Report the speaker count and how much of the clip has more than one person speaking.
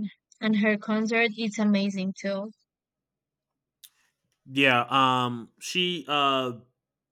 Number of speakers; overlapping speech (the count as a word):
two, no overlap